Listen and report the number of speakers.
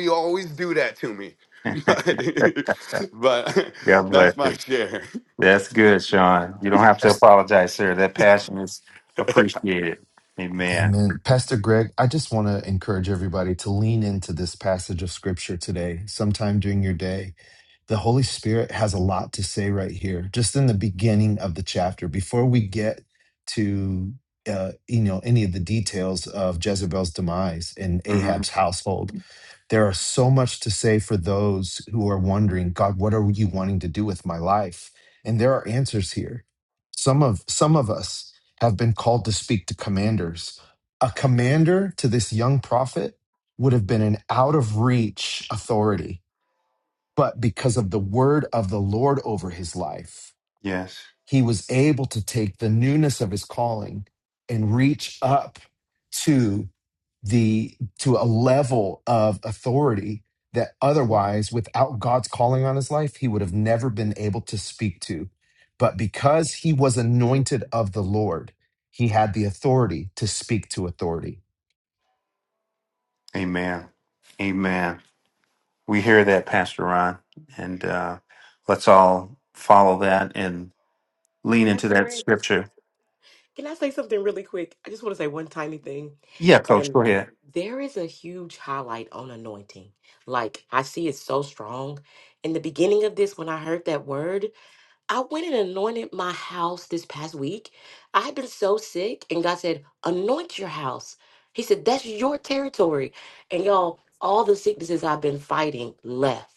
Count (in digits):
4